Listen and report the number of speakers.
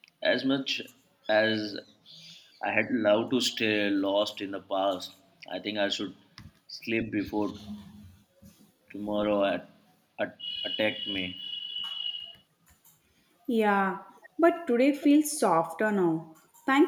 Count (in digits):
2